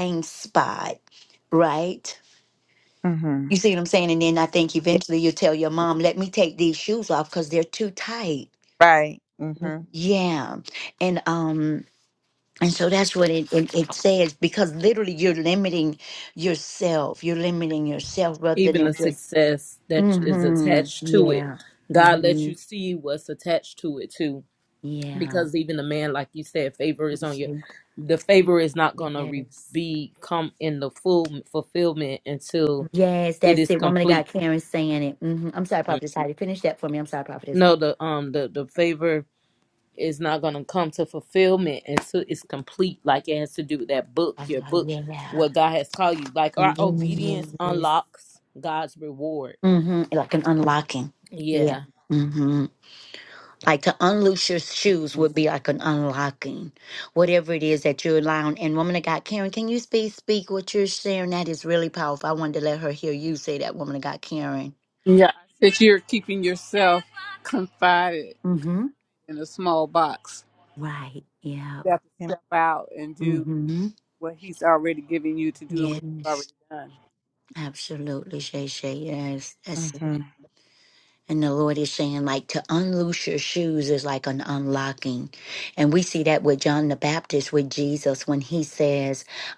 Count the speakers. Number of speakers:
4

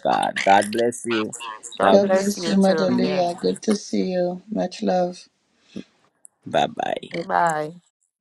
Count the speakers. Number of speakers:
3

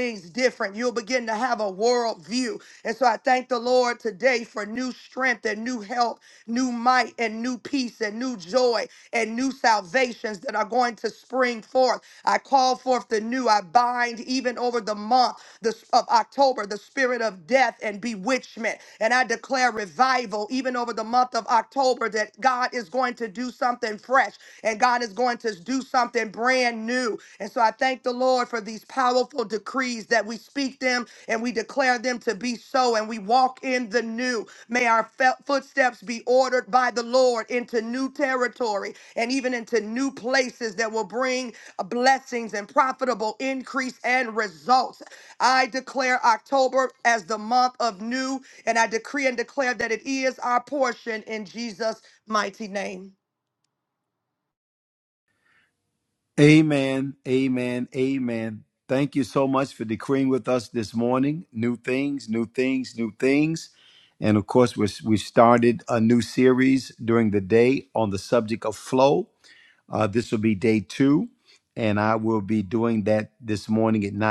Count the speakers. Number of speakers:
2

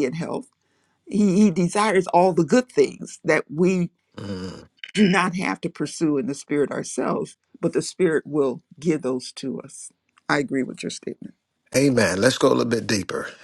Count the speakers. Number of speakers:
2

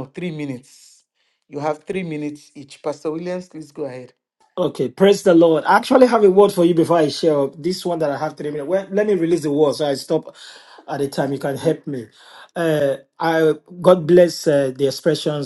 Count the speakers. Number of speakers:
2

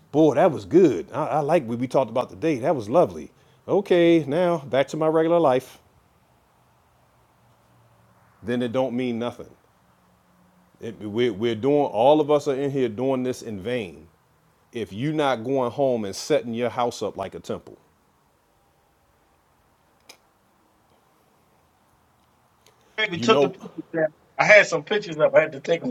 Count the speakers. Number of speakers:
2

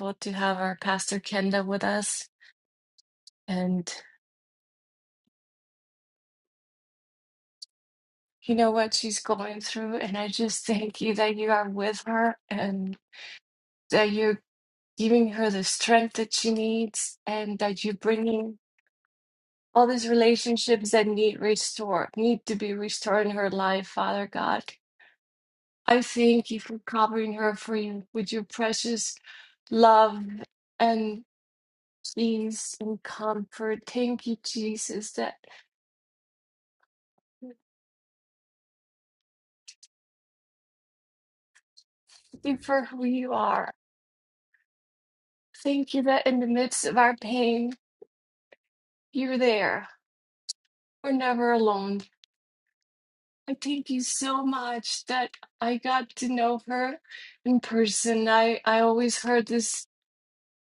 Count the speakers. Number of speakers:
1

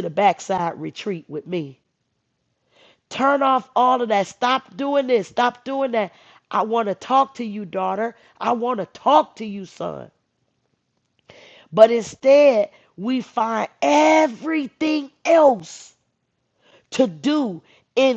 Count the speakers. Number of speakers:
1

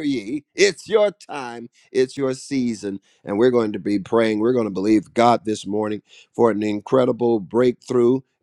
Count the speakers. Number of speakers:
1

